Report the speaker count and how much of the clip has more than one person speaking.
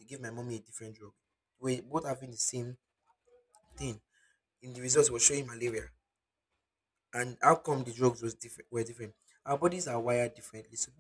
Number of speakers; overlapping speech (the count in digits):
1, no overlap